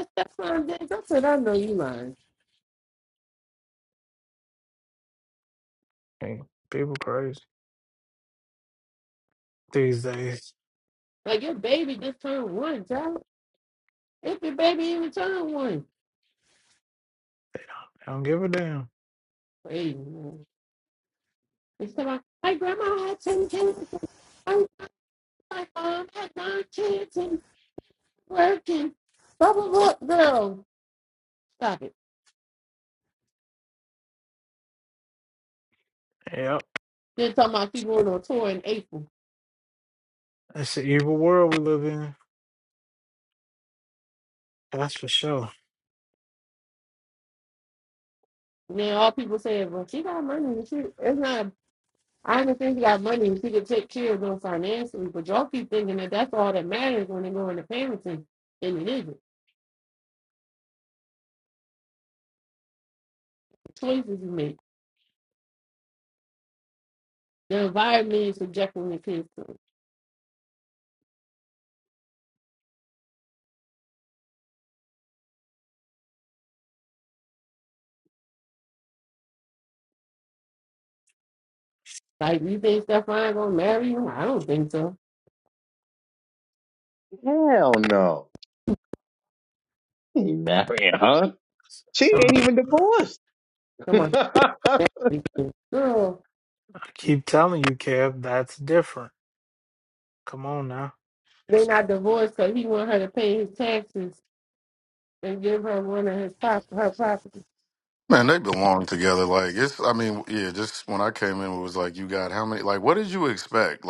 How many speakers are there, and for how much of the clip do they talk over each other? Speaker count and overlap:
four, under 1%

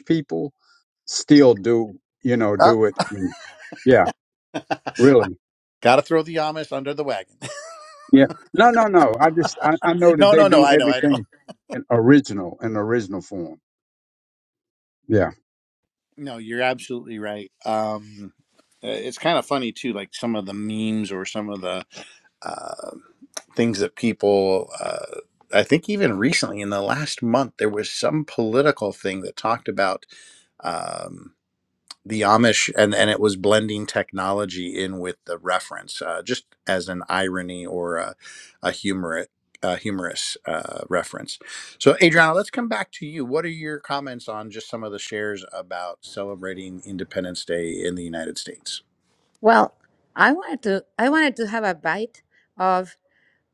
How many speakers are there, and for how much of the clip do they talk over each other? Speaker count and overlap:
three, about 2%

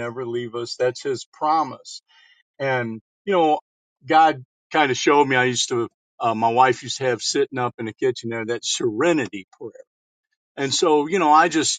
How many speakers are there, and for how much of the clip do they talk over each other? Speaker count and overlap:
one, no overlap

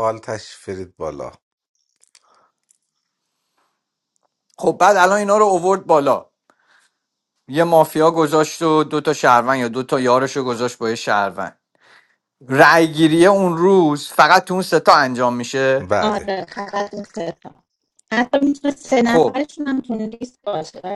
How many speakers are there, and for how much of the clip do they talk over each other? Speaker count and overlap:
three, about 2%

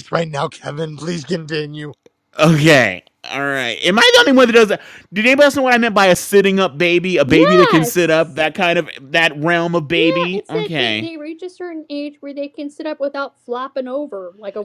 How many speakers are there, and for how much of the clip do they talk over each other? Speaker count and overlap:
three, about 12%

